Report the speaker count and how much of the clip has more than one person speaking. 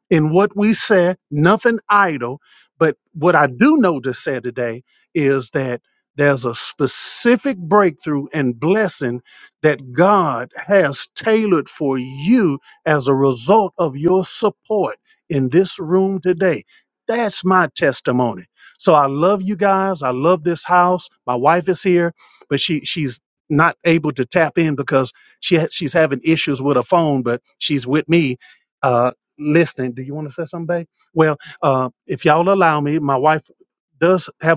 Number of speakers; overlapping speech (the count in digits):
1, no overlap